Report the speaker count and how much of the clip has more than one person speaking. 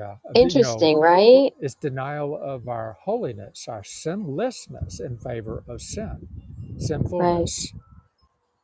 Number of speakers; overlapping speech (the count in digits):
2, about 12%